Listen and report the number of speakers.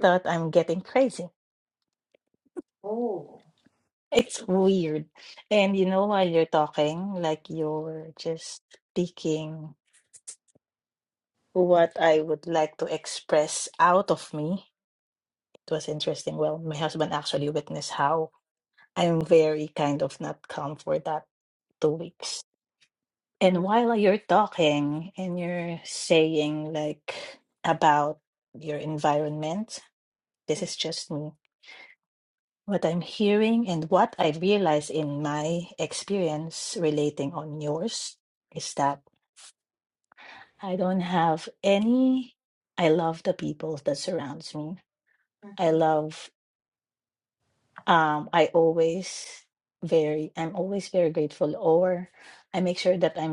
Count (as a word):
two